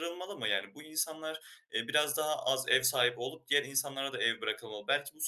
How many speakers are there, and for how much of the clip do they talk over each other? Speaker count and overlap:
1, no overlap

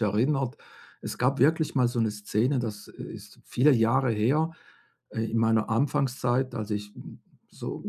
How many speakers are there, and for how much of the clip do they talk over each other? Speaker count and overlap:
1, no overlap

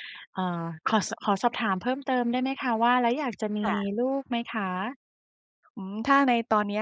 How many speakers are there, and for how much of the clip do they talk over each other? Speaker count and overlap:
2, about 4%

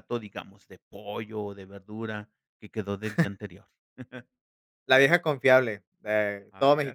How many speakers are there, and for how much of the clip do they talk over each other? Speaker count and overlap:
2, about 6%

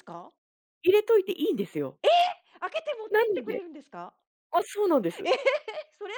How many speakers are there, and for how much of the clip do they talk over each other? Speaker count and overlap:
2, about 10%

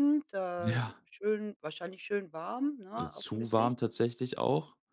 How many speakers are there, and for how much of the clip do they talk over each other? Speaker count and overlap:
2, about 21%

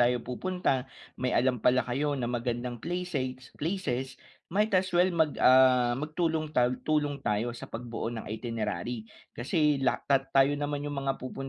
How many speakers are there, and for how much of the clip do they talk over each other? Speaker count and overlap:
1, no overlap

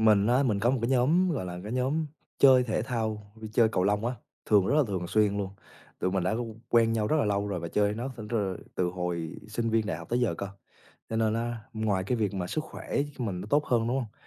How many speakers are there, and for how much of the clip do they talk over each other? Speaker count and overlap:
1, no overlap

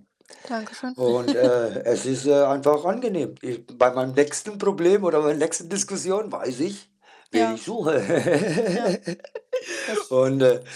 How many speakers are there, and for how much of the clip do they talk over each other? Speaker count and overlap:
2, about 3%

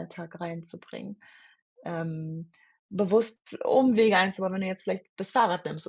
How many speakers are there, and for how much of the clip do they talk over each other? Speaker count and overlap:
1, no overlap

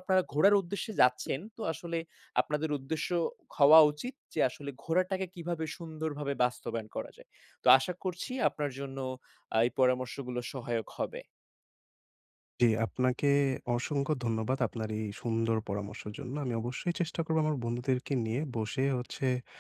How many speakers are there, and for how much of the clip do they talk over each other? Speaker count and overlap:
2, no overlap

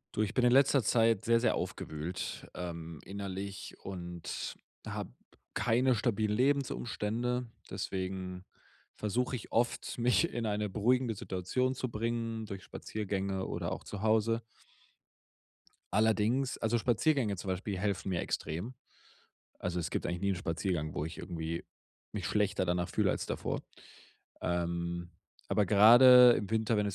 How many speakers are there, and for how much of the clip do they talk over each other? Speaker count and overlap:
1, no overlap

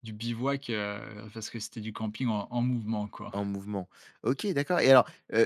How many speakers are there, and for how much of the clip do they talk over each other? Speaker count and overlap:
2, about 1%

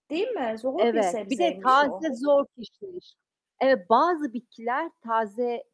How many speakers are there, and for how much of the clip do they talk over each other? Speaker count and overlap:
2, about 23%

